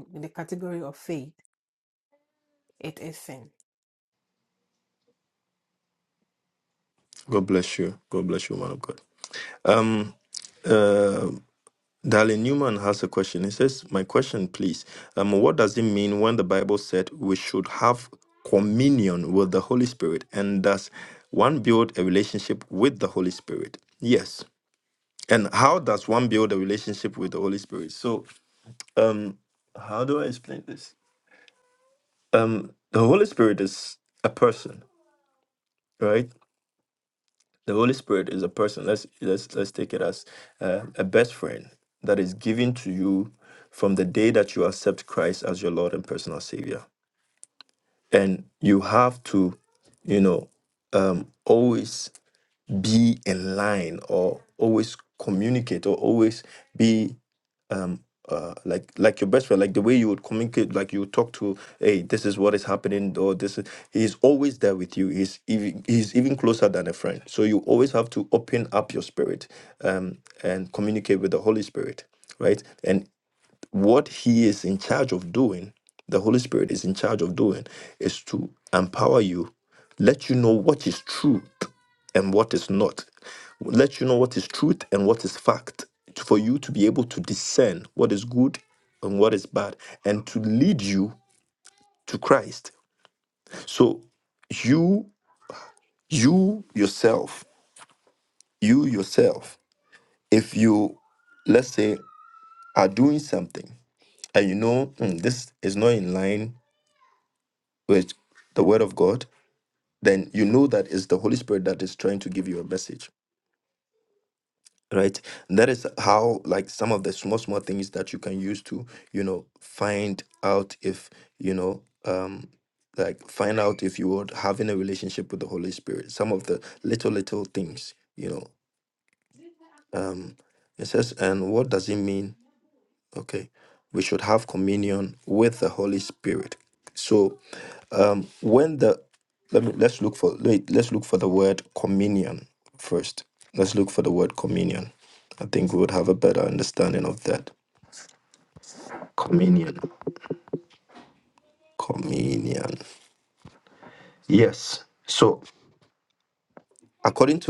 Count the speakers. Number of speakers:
2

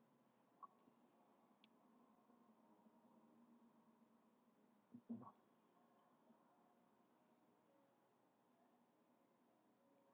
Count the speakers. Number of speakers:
0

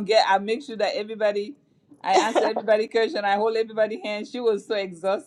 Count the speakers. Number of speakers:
1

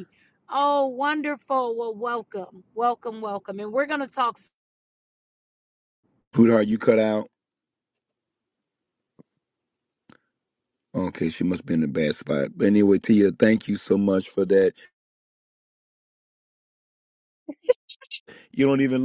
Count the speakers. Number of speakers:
2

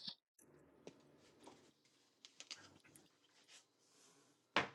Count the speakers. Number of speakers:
0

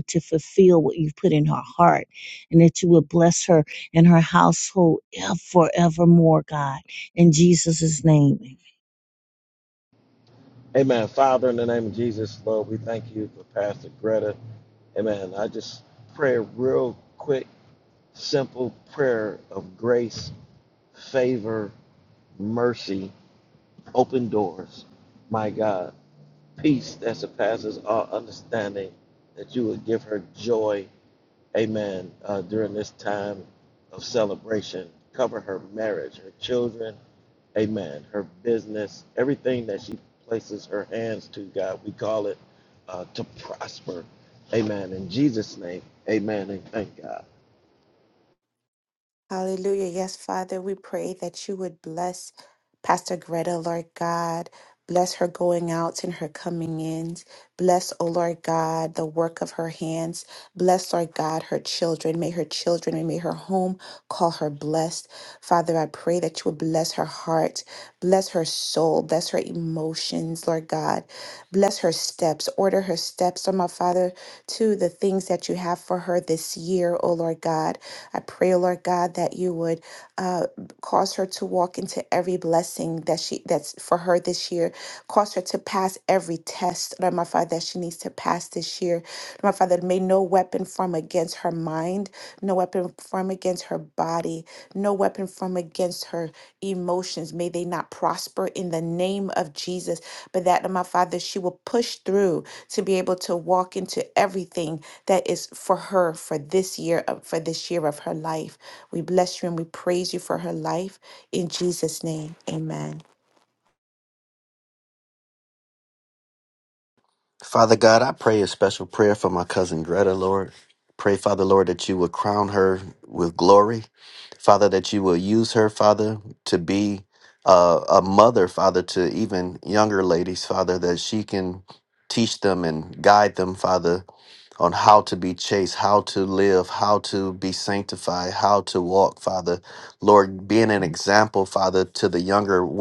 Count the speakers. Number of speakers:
4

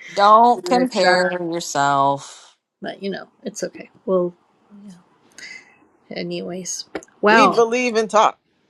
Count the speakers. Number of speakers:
3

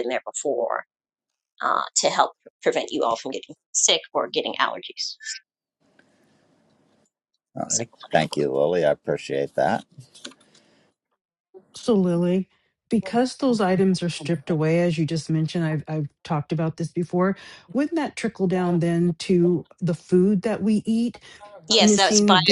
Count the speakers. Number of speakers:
3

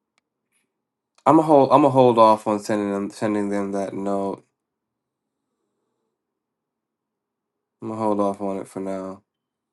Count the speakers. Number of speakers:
1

